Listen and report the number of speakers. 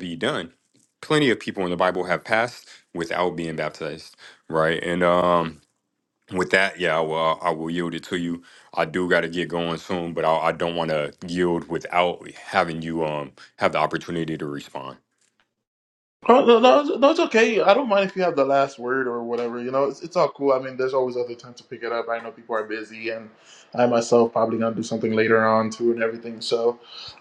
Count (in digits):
2